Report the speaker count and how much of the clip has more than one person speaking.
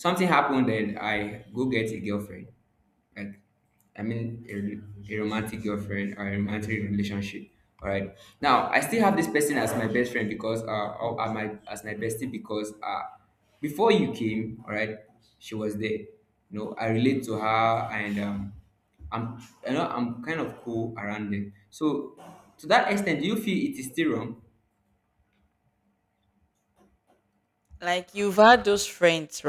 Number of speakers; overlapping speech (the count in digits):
2, no overlap